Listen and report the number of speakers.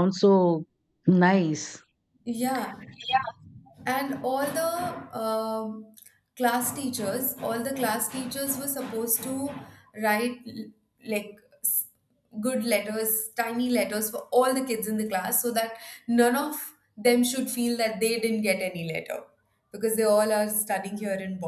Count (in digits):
2